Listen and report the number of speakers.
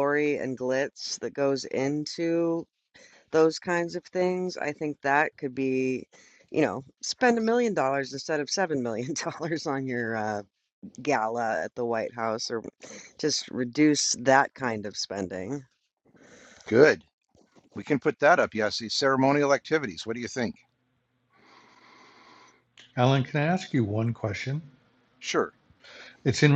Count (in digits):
3